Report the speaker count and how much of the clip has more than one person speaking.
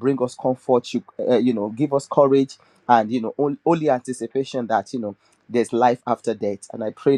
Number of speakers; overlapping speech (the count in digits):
1, no overlap